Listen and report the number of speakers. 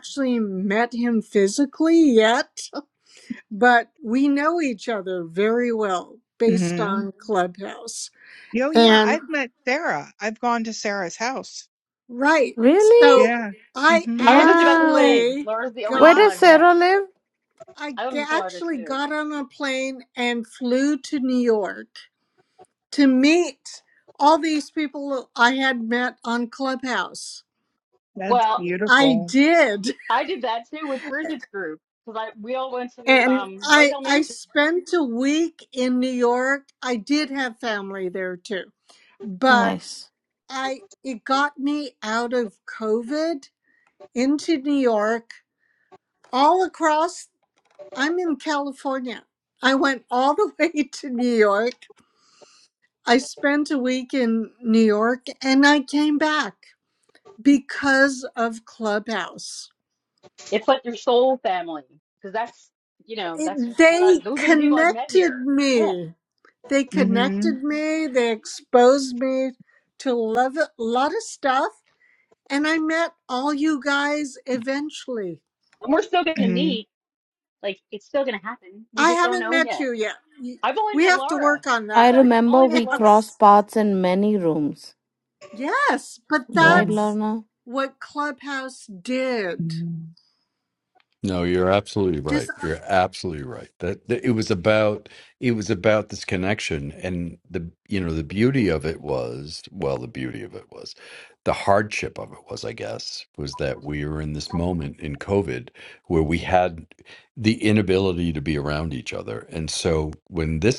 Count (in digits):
5